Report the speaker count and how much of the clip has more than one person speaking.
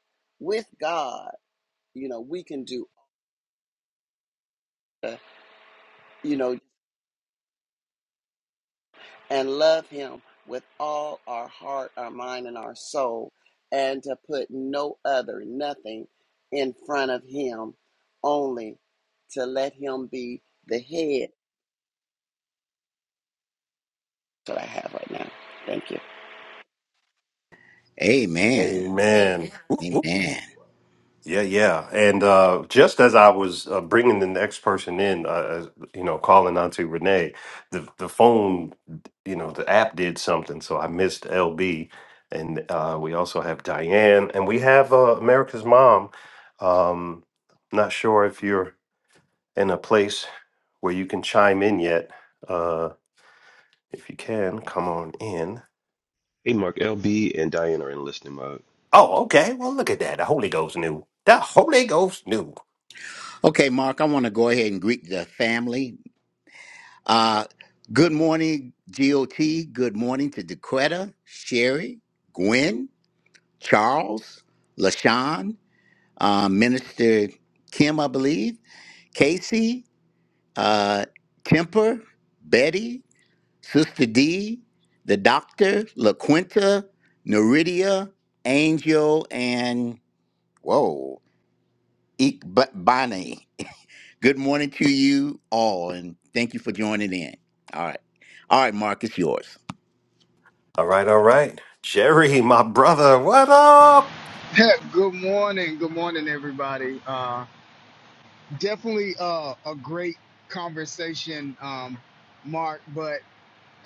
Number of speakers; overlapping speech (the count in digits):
5, under 1%